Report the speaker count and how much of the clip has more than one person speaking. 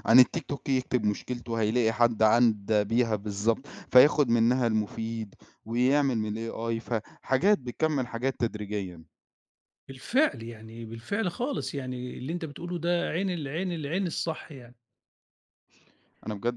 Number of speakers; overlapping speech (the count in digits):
2, no overlap